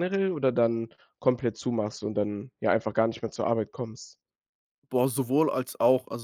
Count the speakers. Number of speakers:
2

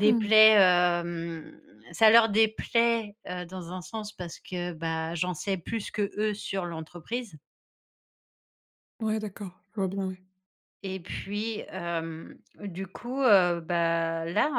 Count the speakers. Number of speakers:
2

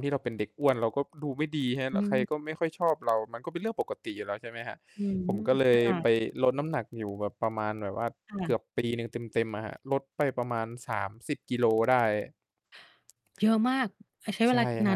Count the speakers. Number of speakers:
2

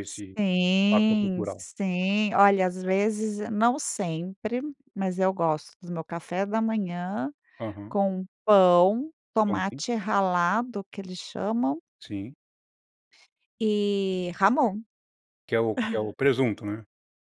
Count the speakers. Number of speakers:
2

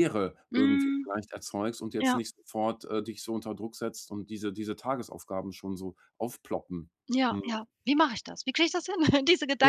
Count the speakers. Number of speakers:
2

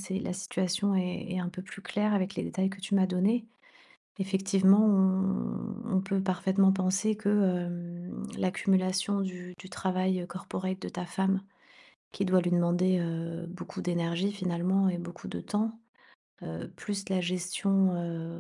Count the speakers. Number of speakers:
1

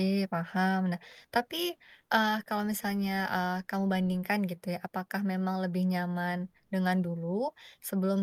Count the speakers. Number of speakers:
1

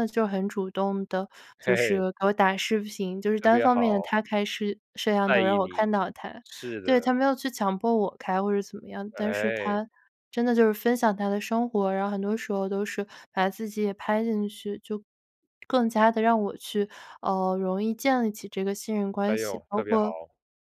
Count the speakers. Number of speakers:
2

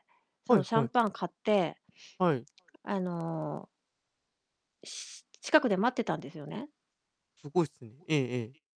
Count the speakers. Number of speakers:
2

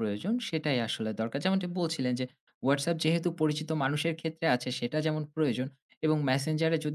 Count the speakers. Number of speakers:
1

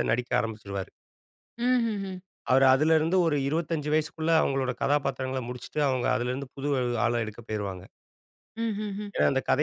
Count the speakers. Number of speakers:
2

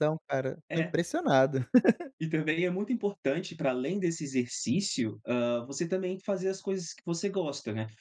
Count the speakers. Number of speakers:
2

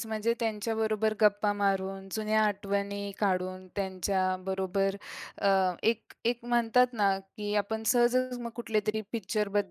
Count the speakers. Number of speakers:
1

